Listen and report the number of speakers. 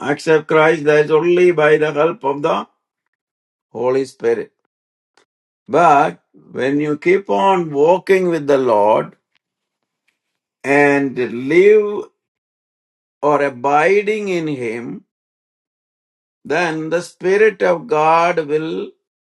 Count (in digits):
1